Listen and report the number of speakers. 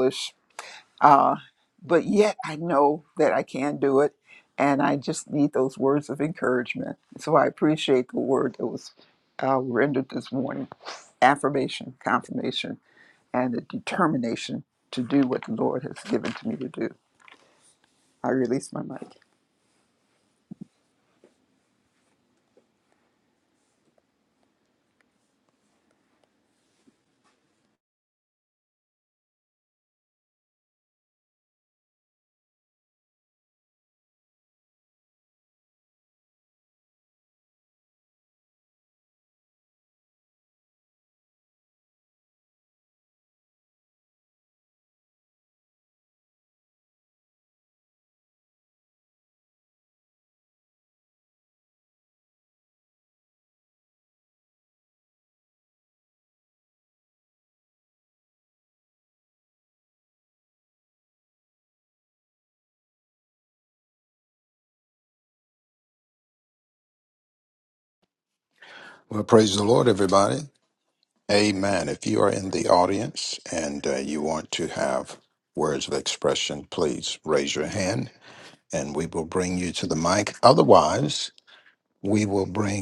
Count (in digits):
2